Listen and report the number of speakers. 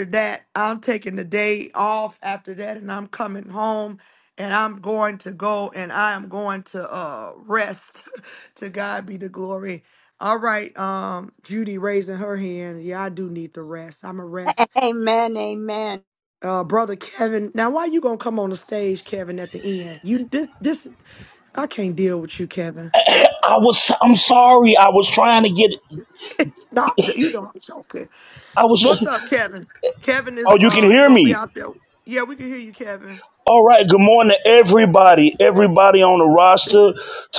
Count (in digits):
3